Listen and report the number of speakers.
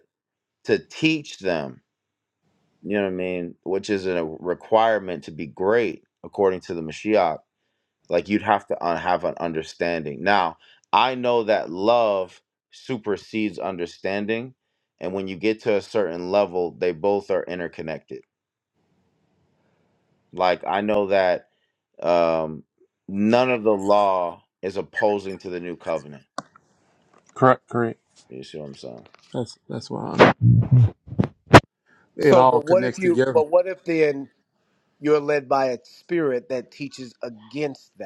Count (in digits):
3